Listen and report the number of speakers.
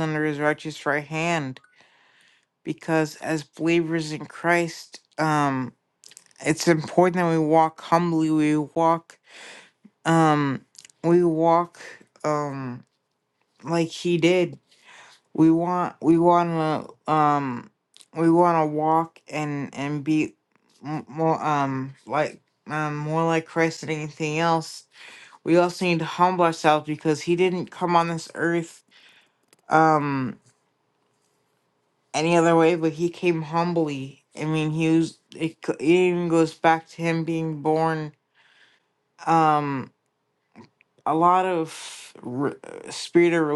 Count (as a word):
one